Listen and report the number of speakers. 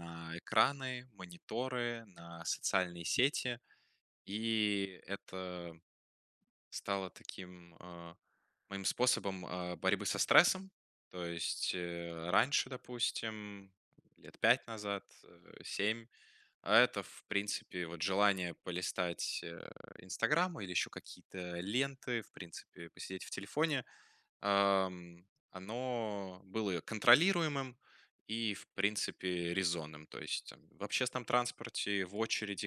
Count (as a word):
one